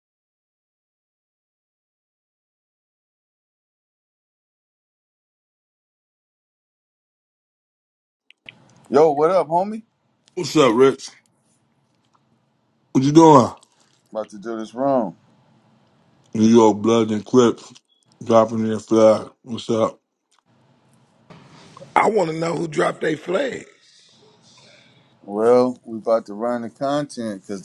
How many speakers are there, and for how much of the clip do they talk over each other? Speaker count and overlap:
three, no overlap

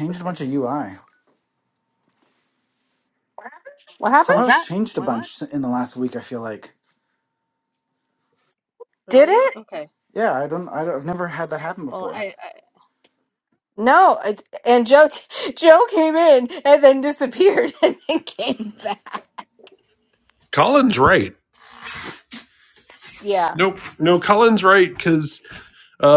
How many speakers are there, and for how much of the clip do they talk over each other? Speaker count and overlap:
four, about 8%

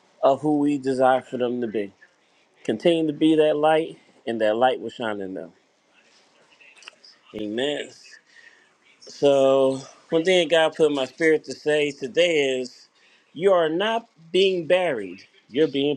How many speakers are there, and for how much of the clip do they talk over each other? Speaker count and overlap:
one, no overlap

